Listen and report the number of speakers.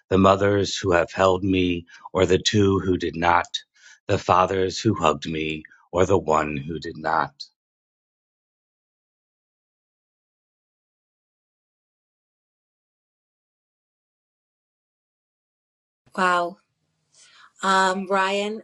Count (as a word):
two